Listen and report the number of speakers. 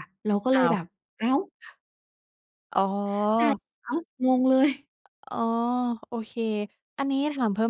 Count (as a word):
two